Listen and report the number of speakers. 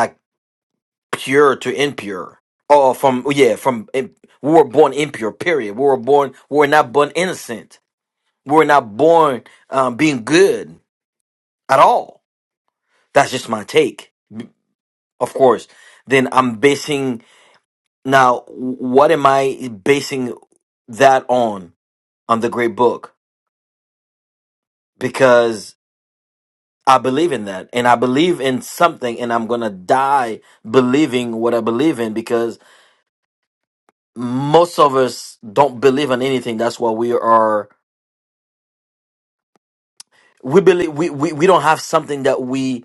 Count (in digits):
1